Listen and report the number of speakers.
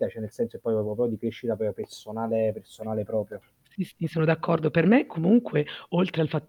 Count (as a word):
two